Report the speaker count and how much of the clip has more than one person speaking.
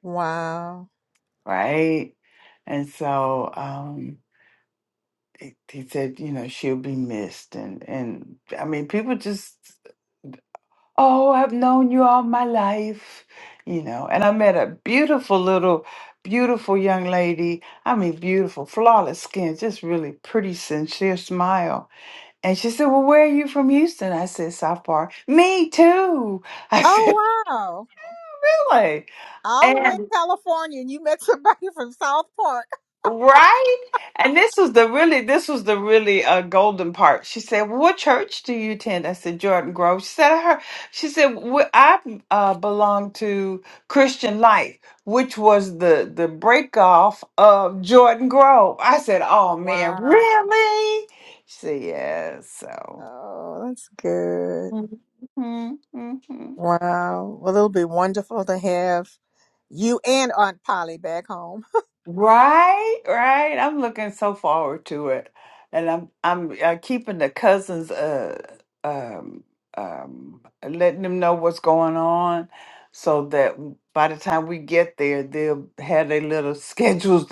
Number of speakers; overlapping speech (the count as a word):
two, about 2%